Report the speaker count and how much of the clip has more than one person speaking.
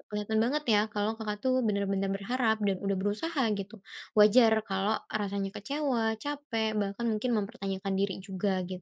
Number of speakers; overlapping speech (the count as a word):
one, no overlap